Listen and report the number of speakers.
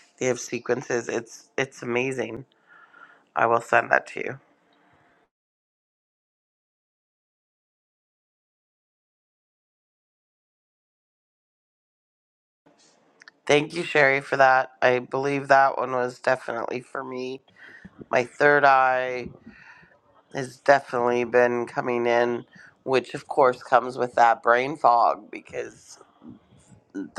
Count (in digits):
1